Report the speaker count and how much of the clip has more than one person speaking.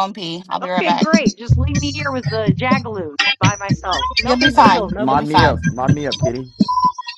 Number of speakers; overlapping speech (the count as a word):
three, about 25%